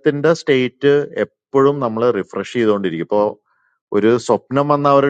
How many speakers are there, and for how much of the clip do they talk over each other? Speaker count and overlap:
one, no overlap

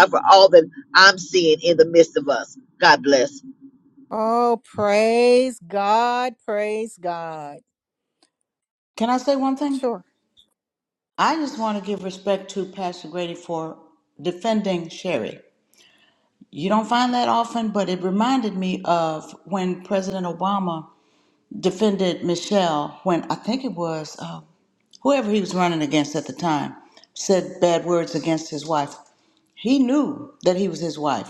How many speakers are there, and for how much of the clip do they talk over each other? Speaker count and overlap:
three, no overlap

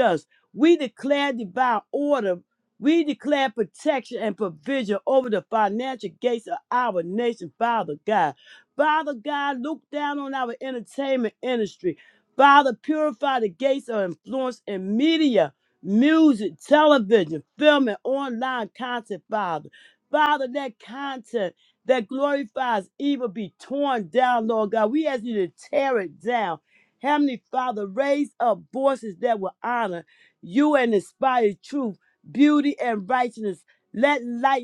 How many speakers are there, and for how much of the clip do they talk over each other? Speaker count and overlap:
one, no overlap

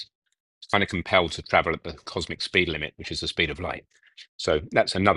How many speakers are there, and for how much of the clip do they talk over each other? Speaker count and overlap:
one, no overlap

